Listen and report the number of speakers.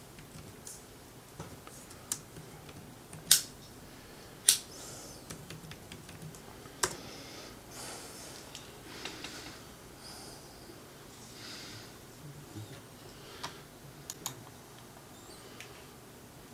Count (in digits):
0